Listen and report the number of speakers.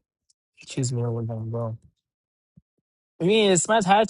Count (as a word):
one